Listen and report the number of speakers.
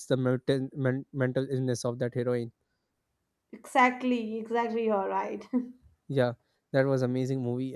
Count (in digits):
2